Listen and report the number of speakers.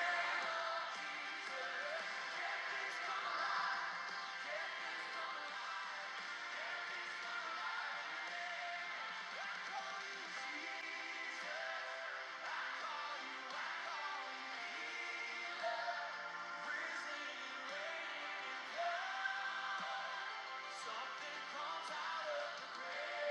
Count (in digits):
0